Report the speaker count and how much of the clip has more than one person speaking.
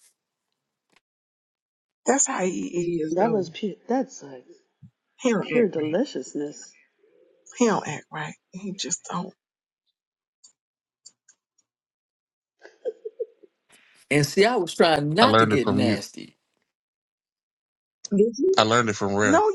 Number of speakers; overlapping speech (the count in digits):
4, about 10%